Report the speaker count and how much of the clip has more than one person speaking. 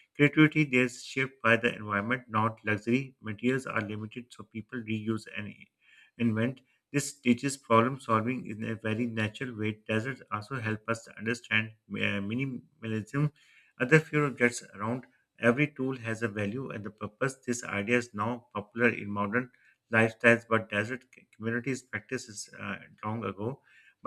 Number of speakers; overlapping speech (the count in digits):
1, no overlap